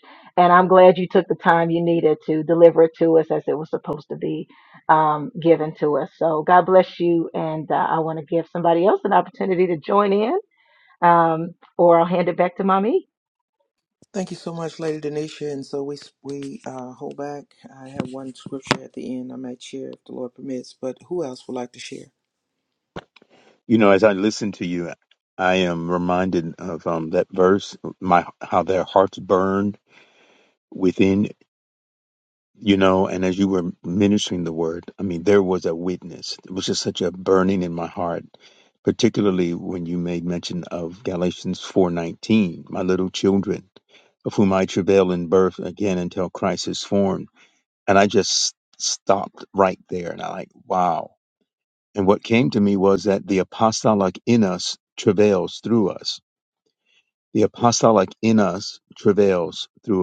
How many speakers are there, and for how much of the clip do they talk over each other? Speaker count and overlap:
3, no overlap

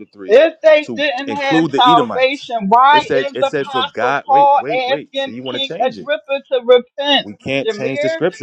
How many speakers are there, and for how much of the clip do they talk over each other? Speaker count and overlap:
2, about 61%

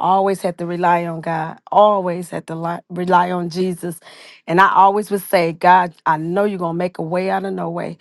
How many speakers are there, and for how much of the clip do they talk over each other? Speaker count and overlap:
1, no overlap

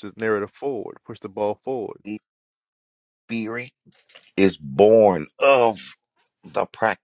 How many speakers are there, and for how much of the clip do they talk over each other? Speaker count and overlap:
2, no overlap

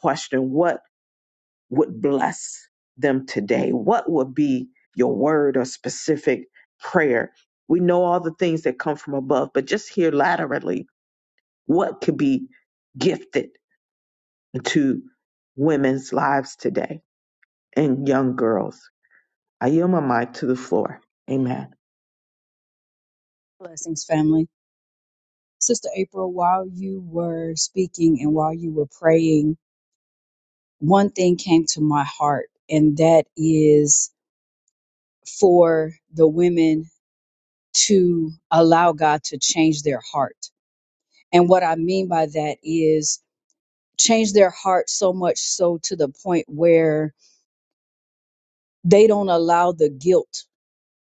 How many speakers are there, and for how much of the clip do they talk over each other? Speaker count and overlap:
2, no overlap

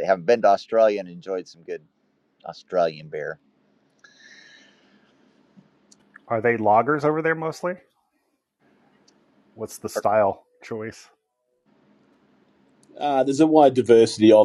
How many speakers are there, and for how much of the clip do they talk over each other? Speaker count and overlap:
3, no overlap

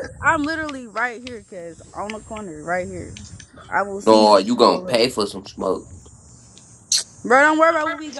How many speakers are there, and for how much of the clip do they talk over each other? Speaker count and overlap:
2, about 5%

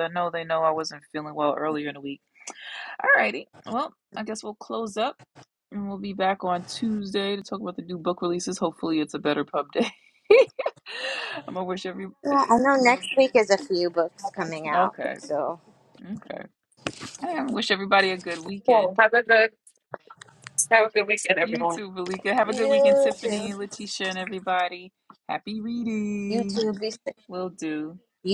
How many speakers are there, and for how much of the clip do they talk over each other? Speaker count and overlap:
3, about 9%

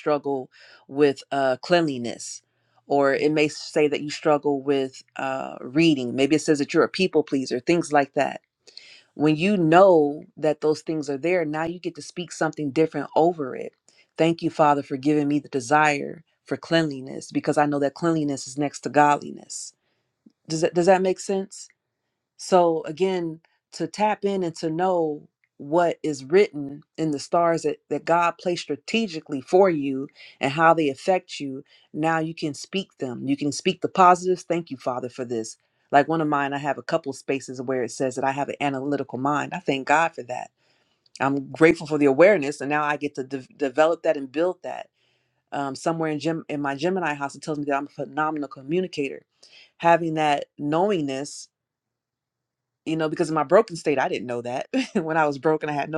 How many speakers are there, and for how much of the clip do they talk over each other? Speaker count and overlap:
1, no overlap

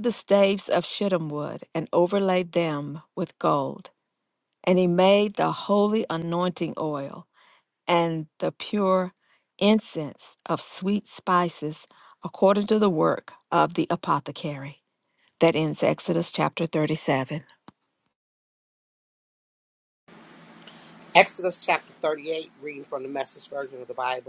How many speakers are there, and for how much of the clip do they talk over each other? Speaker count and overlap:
2, no overlap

